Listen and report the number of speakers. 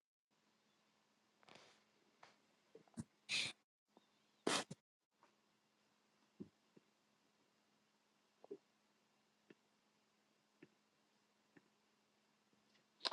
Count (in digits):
0